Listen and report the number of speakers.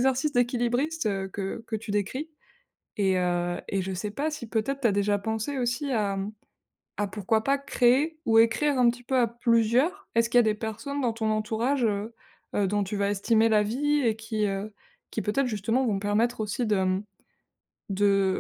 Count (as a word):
one